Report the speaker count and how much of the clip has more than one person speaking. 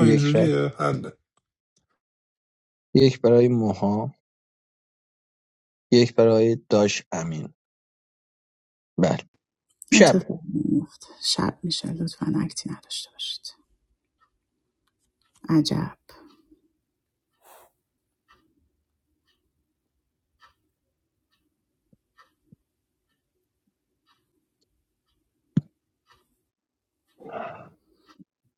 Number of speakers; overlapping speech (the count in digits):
3, about 3%